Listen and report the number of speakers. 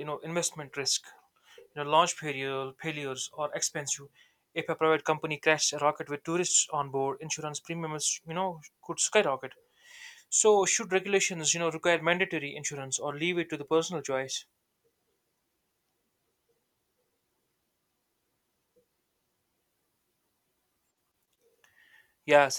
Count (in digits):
1